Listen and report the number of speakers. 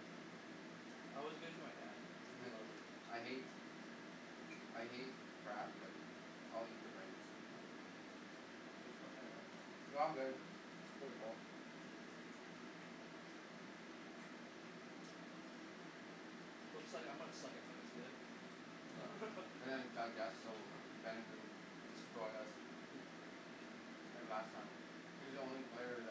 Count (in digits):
2